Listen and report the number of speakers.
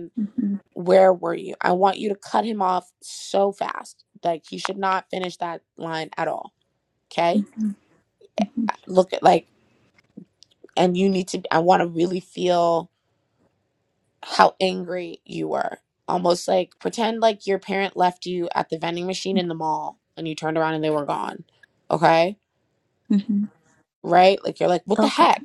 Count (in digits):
2